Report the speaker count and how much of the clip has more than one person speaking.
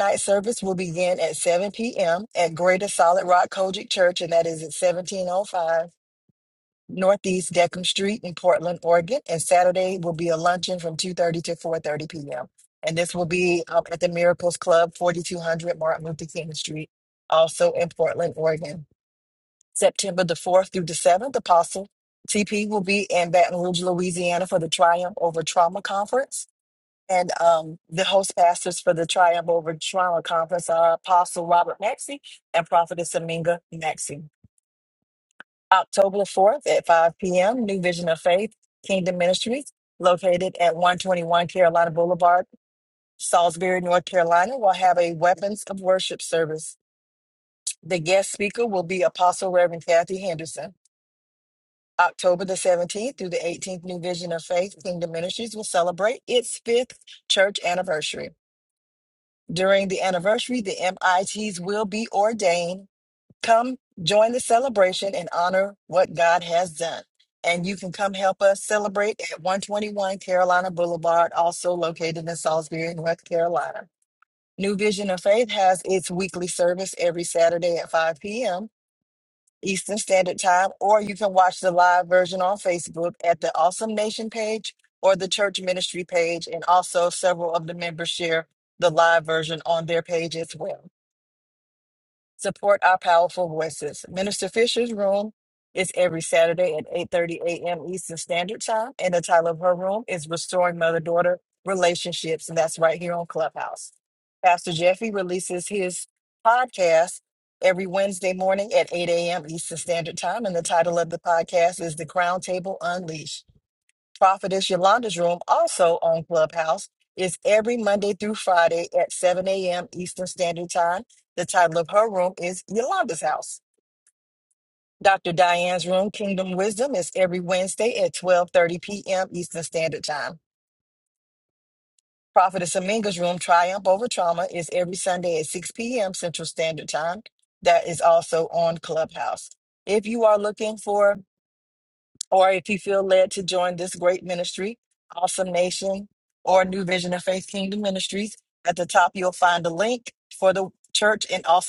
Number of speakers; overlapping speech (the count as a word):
one, no overlap